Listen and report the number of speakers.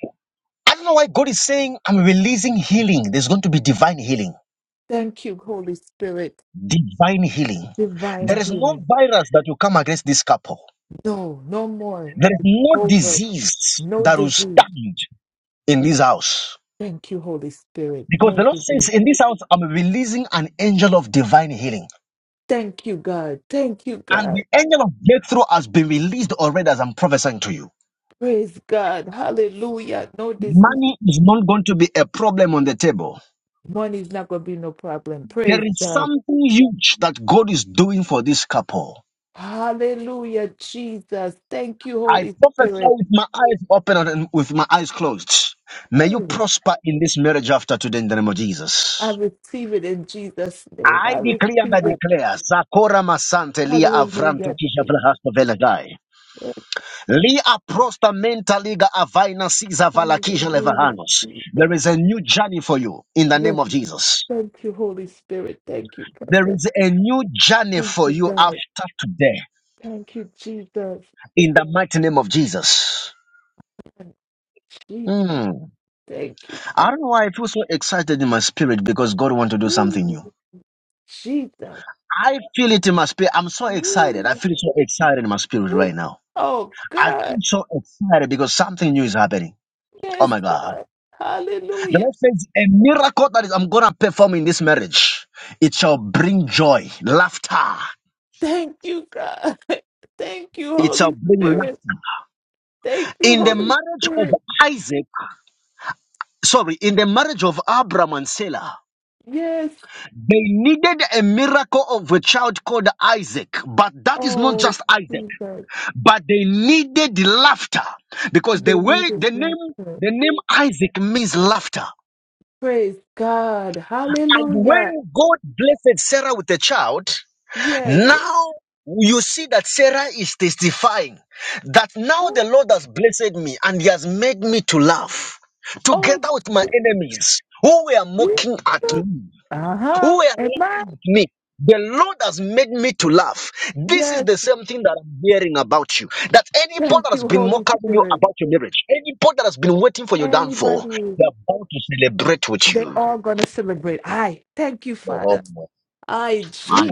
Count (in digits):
2